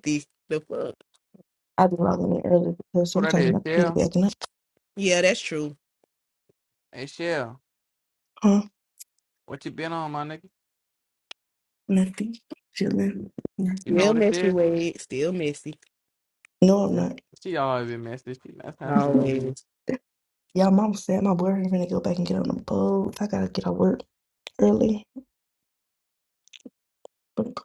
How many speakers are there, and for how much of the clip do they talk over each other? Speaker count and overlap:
three, about 8%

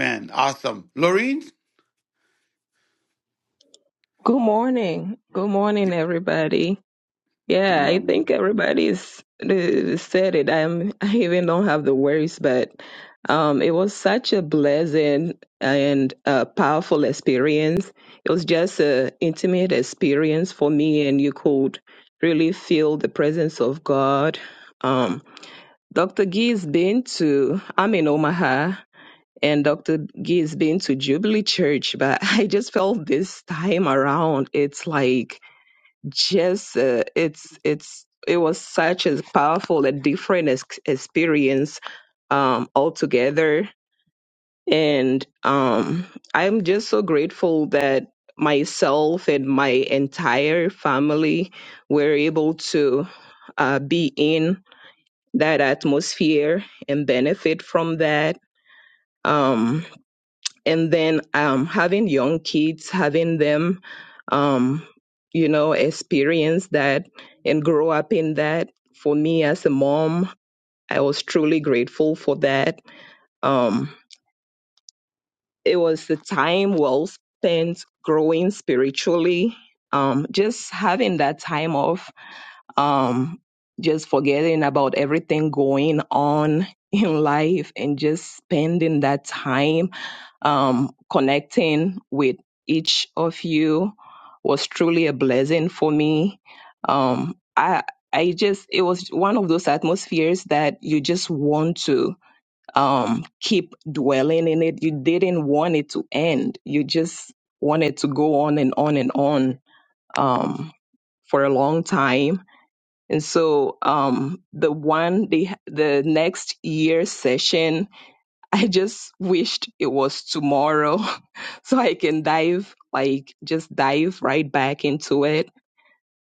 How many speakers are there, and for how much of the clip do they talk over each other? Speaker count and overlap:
two, under 1%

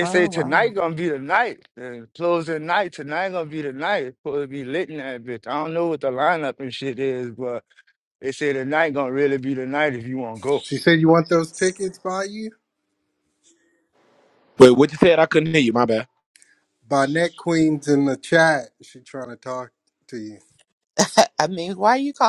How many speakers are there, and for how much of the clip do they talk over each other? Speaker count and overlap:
four, about 3%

